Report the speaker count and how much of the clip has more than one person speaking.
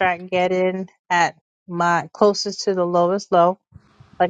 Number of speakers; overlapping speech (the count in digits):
1, no overlap